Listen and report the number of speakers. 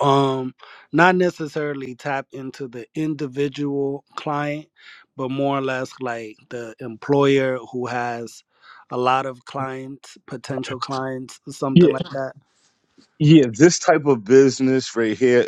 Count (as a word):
two